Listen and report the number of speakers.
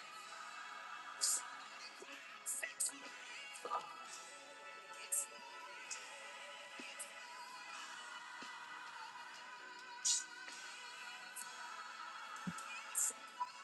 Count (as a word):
zero